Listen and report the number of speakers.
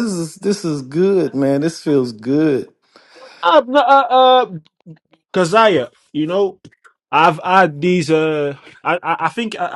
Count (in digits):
2